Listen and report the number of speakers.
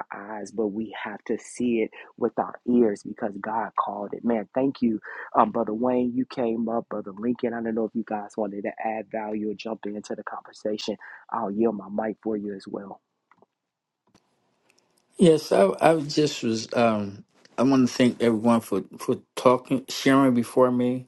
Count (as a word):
two